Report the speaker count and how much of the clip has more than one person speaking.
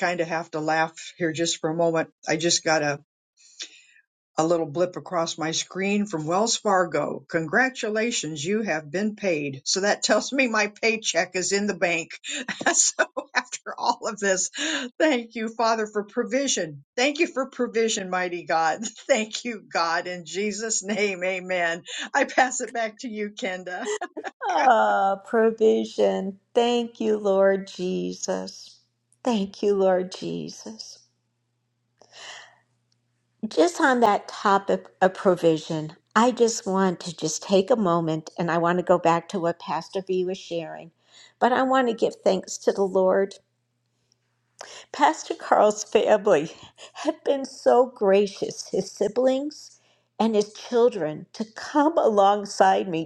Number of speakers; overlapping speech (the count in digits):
2, no overlap